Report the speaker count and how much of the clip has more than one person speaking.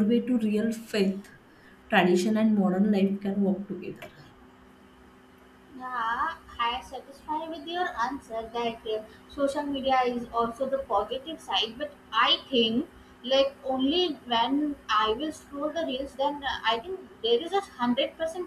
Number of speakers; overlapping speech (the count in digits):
2, no overlap